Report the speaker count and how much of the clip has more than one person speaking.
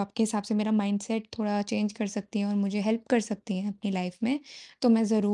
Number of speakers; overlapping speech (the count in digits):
1, no overlap